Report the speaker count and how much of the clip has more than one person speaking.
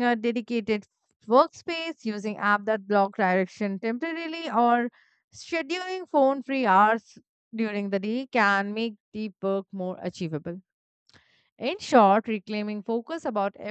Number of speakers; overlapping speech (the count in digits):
1, no overlap